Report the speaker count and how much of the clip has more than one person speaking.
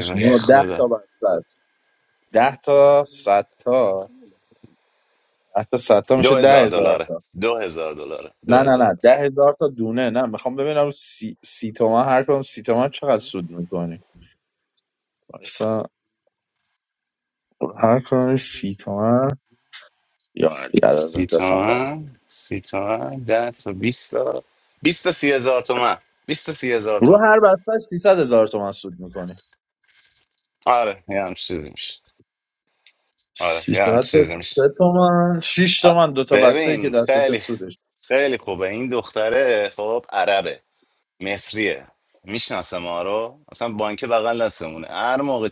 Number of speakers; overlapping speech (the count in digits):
2, about 12%